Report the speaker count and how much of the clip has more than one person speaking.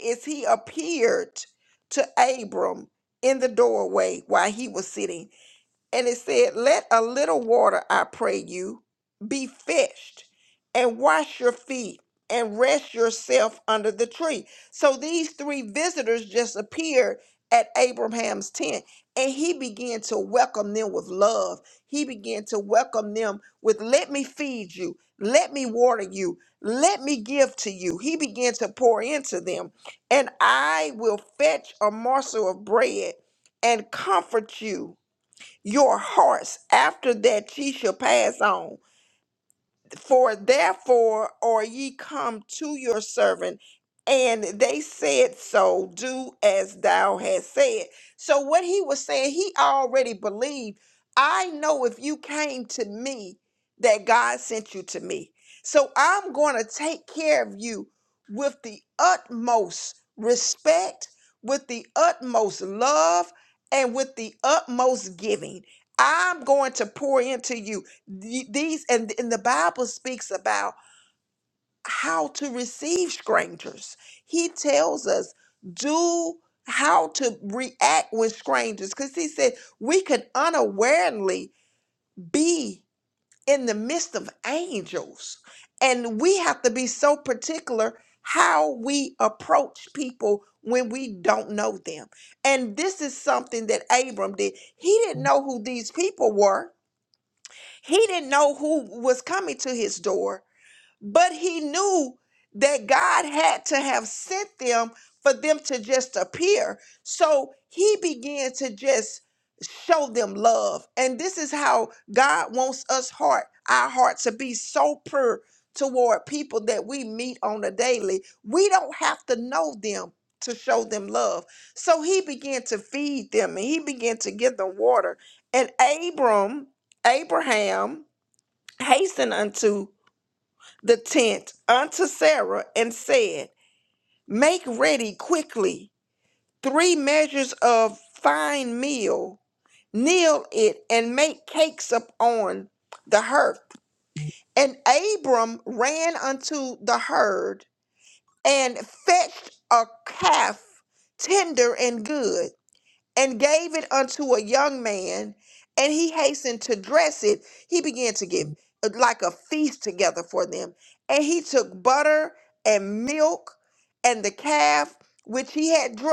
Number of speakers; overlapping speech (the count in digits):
1, no overlap